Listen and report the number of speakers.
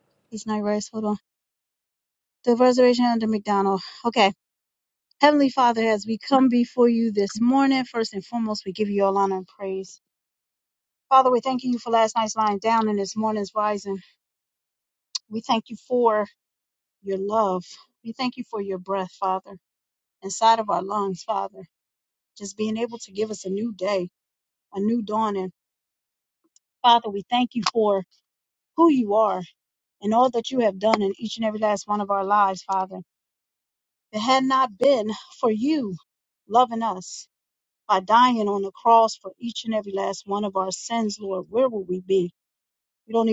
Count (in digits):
1